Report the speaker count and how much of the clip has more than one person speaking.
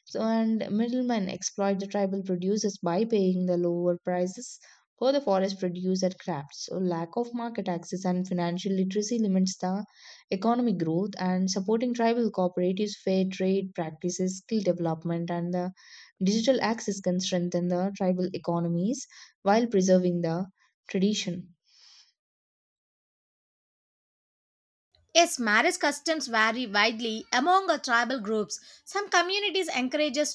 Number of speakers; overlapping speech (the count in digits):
2, no overlap